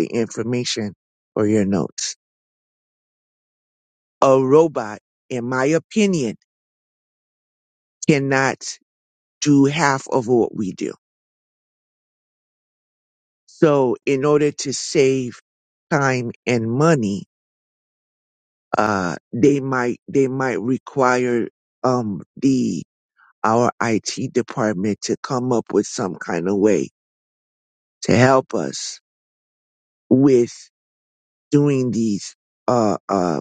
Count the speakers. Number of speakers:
1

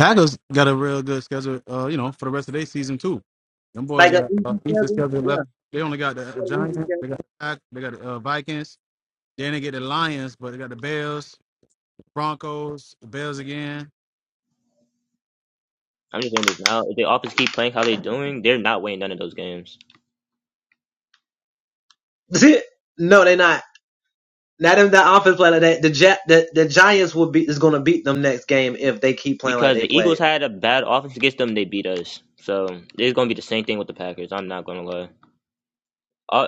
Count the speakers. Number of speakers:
3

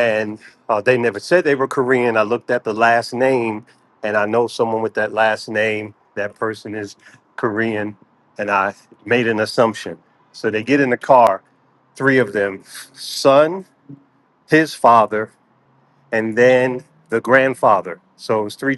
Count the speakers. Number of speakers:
1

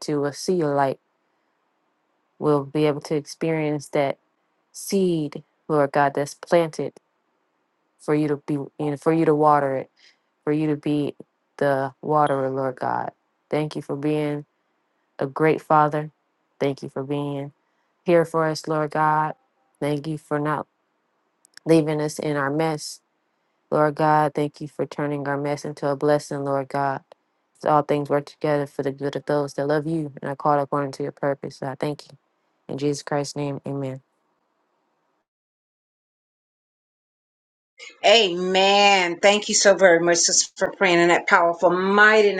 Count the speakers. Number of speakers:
2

